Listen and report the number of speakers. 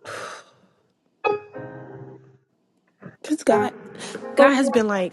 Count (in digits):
1